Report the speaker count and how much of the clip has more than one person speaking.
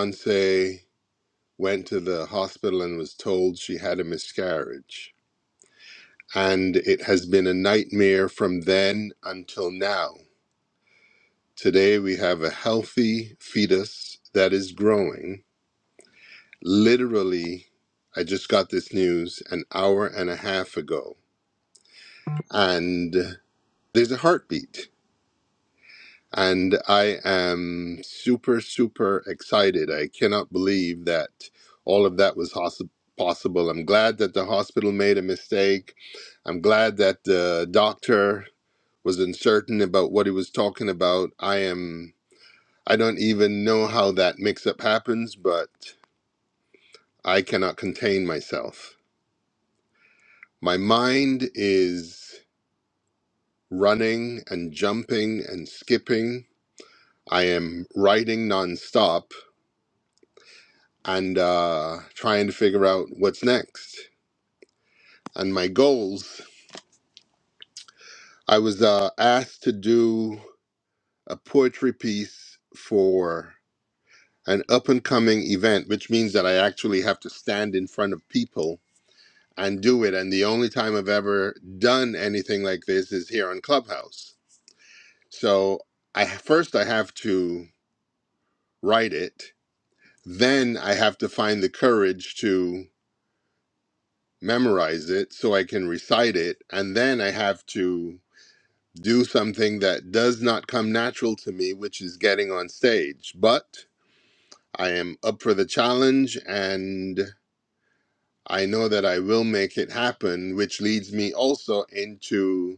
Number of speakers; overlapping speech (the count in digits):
1, no overlap